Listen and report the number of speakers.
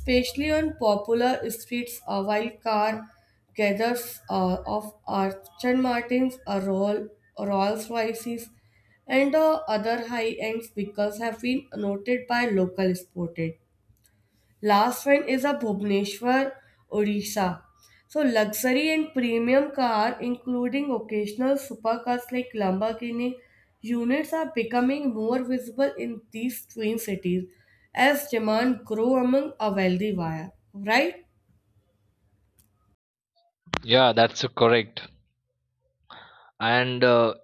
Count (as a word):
two